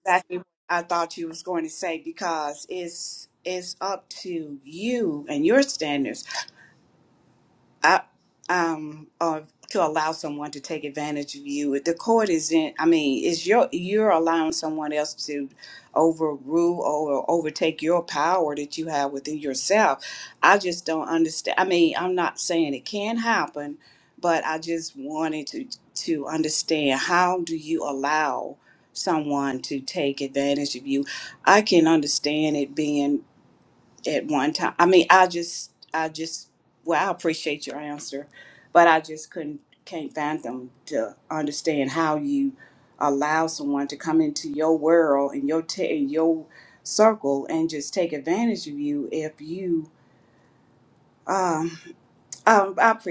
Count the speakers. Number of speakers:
one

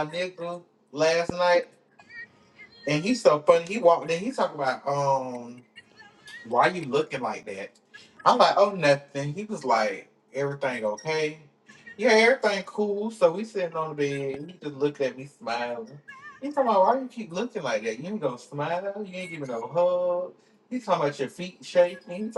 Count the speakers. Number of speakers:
one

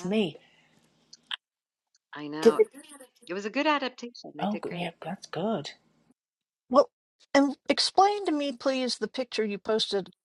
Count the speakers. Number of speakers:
three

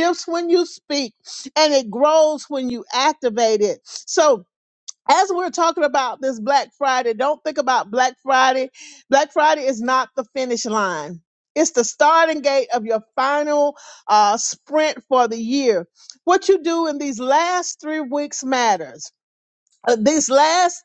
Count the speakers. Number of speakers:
one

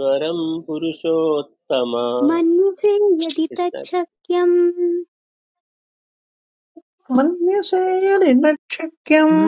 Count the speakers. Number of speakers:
three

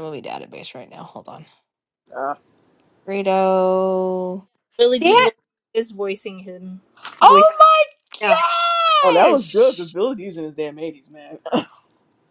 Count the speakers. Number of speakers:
three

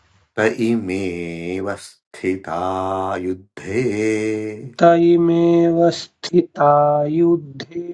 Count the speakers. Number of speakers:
two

